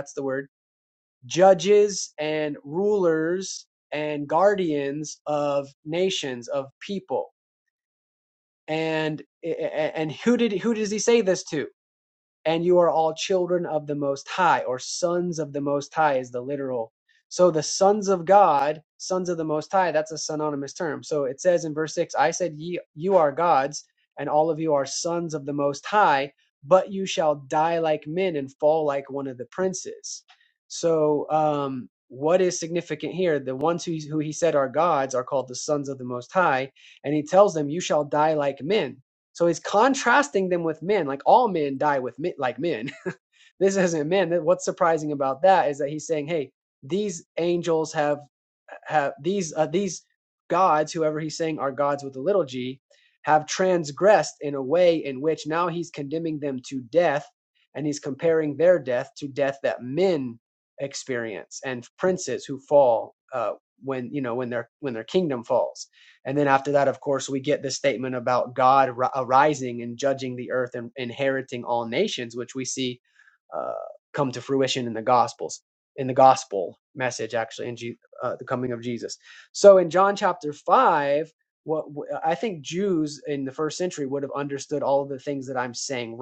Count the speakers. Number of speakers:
1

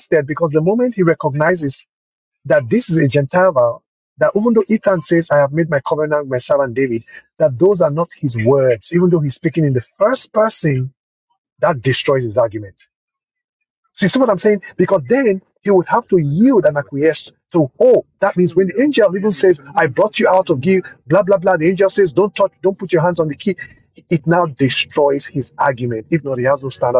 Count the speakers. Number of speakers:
1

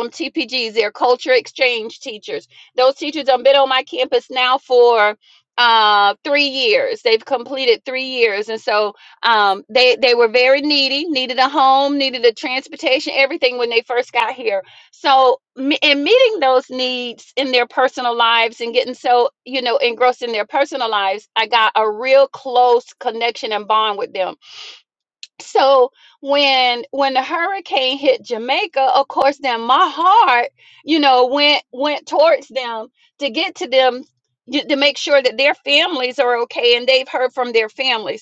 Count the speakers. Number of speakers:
1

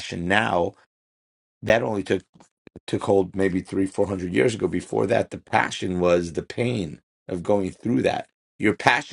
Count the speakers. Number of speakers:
1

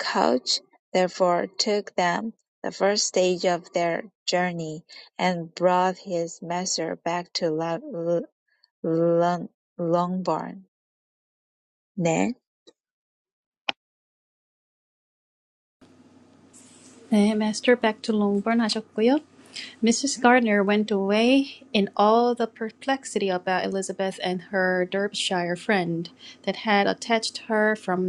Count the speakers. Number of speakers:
2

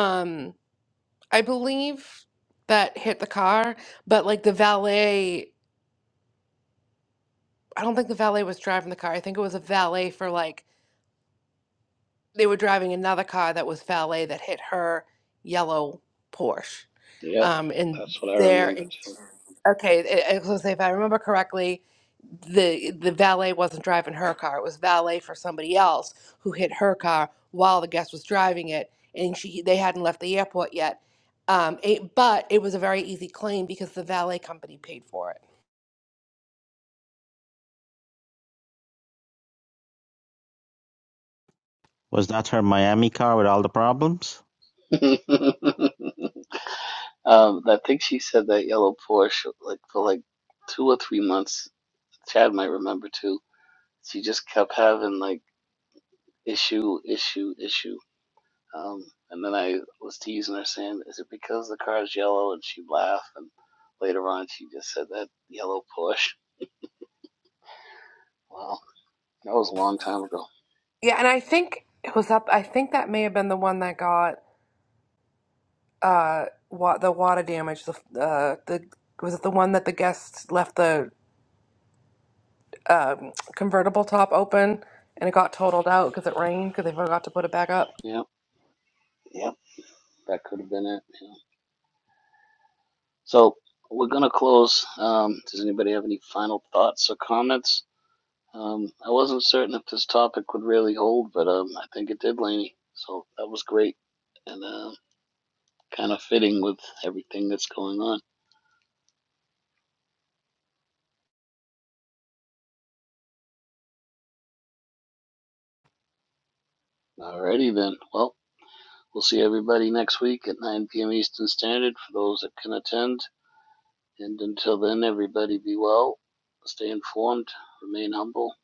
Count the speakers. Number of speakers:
3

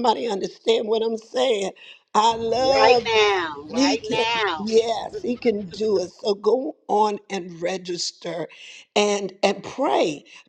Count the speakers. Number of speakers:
2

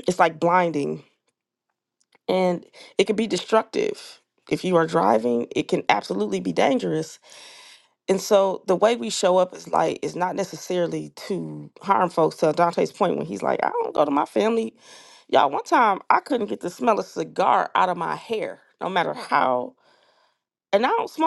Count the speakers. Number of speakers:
1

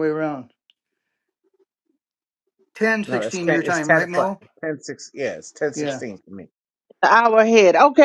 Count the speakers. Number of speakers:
3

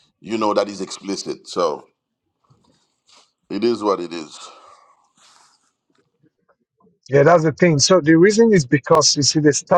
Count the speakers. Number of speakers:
2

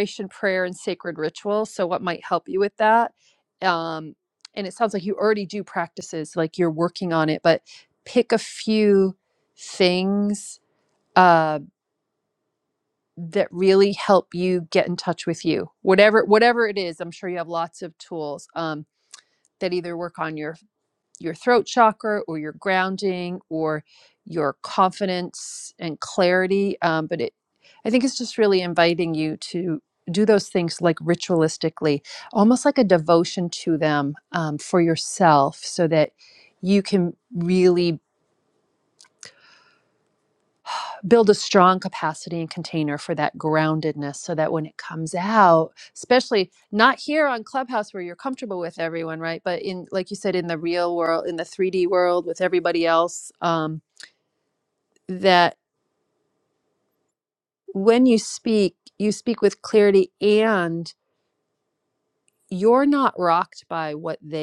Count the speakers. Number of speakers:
1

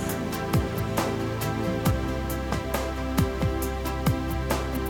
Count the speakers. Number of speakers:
0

